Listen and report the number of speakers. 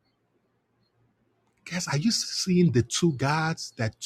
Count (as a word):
one